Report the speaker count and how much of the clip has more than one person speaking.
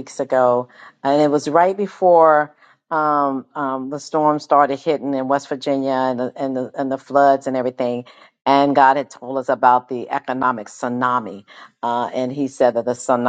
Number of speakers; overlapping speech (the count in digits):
1, no overlap